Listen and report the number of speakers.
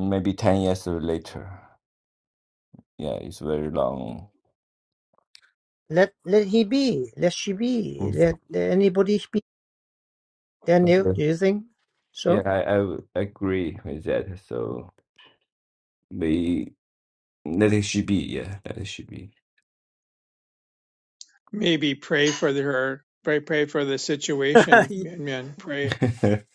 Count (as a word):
three